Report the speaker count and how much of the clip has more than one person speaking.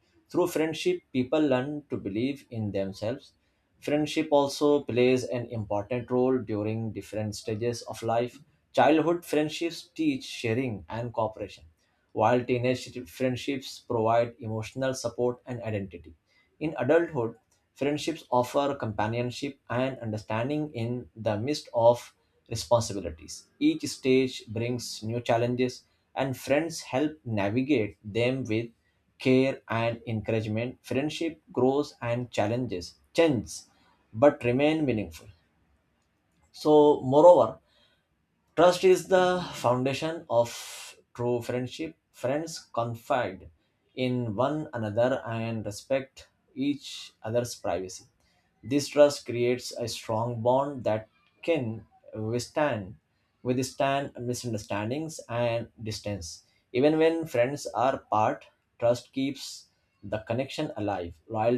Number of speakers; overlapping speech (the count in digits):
1, no overlap